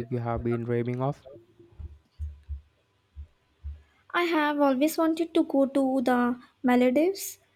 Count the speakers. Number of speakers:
2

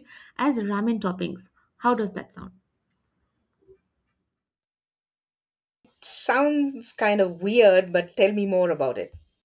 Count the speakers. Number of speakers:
2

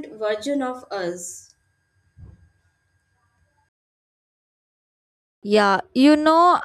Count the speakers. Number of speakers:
2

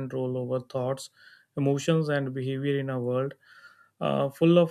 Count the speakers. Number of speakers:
1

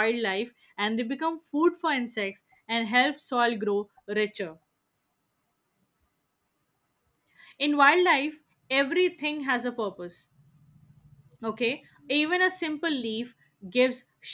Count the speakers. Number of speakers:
1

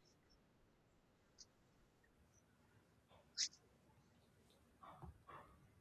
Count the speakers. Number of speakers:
0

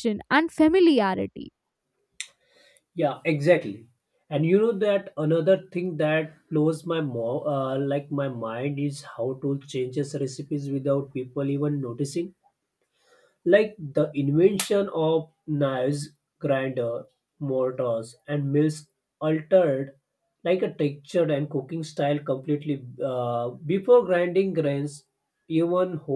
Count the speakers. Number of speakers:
2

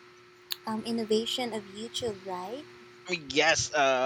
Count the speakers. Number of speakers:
2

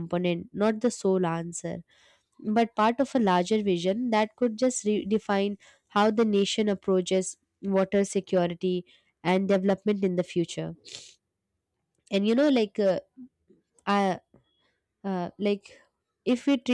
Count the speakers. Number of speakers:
1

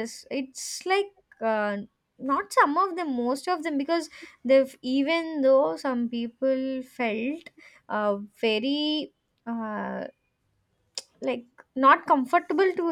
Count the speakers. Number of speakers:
1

